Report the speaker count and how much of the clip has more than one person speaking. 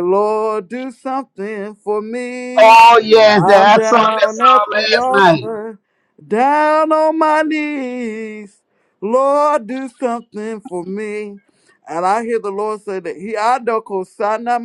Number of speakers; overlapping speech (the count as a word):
two, about 16%